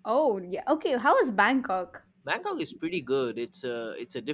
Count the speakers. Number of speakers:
two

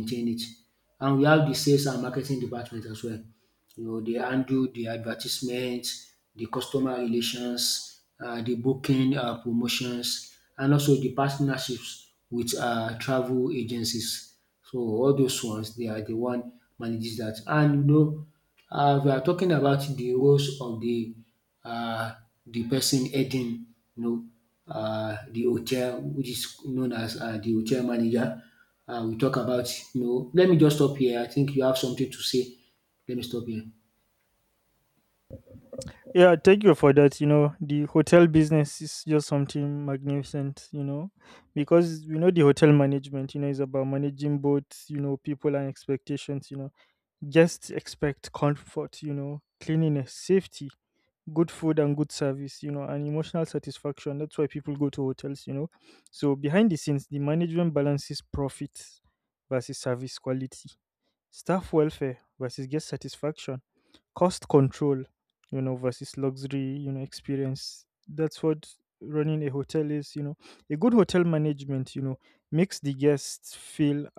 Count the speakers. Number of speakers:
two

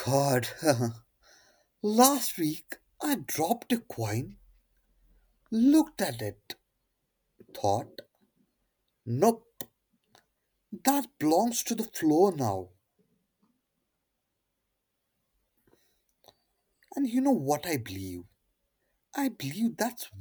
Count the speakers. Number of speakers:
one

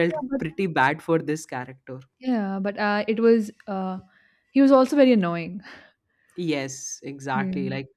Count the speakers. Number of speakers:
two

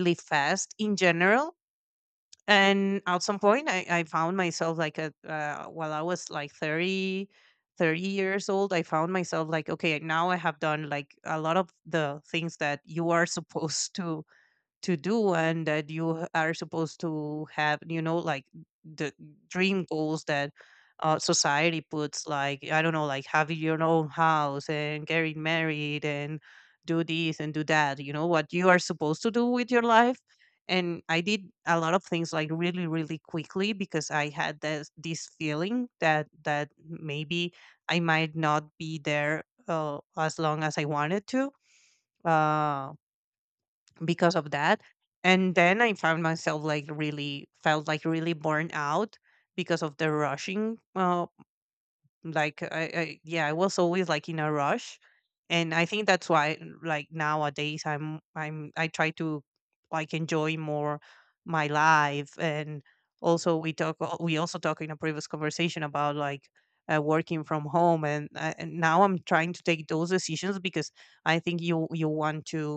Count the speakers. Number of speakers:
one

